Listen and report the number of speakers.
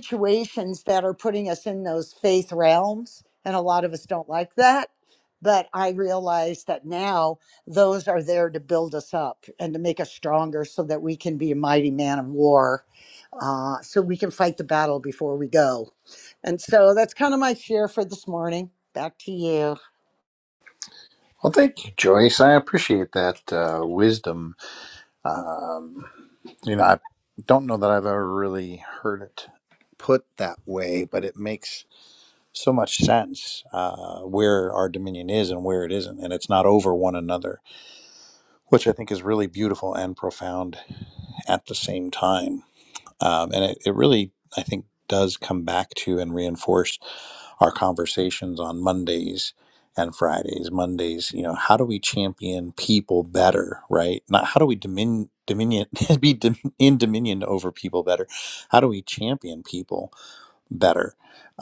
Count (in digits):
2